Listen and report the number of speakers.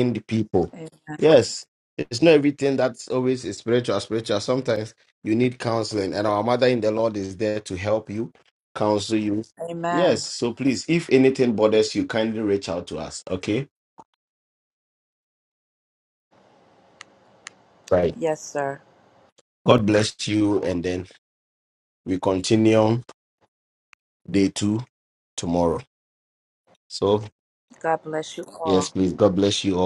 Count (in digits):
2